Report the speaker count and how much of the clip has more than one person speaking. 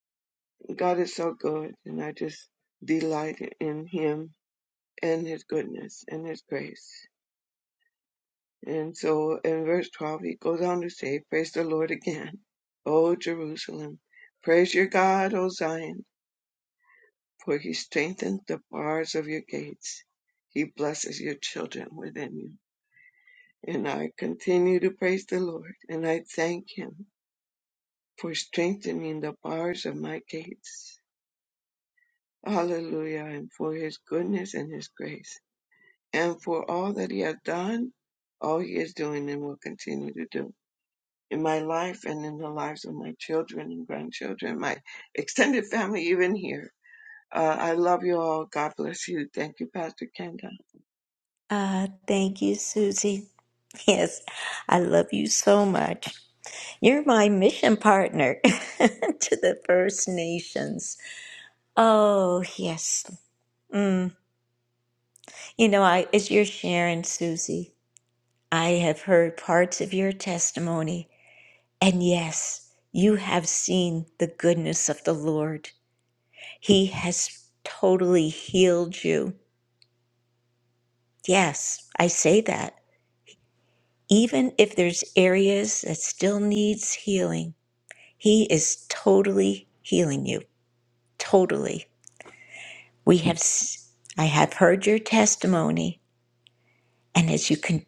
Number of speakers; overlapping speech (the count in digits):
2, no overlap